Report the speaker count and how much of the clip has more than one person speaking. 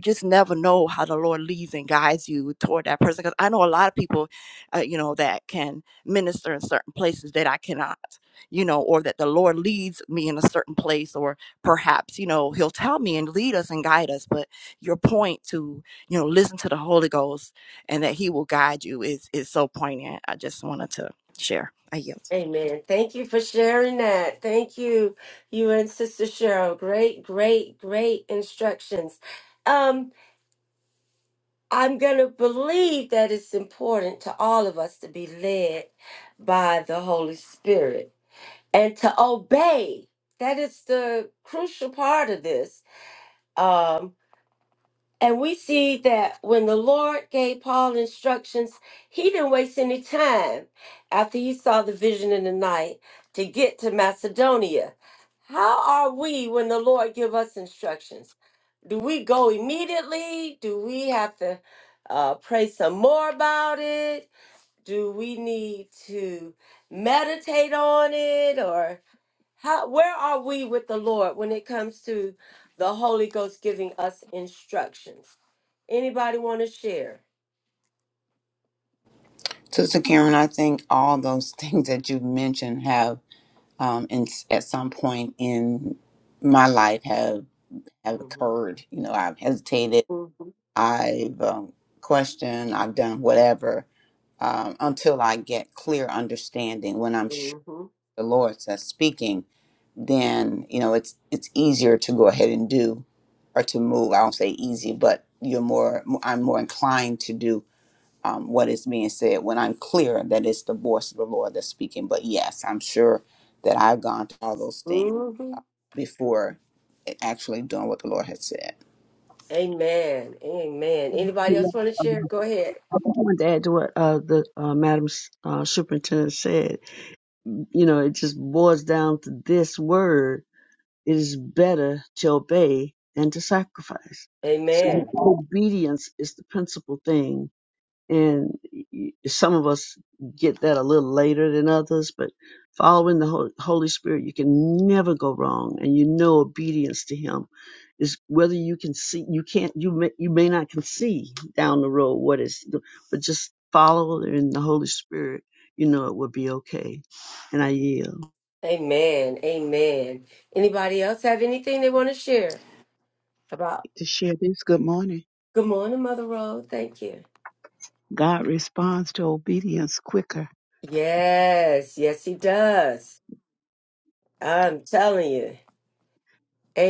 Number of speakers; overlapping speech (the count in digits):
5, about 1%